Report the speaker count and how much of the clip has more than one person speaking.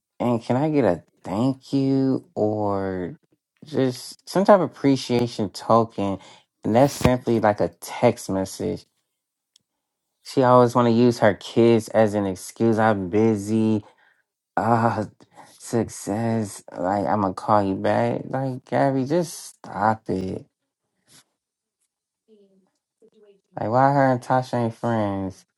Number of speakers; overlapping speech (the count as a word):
one, no overlap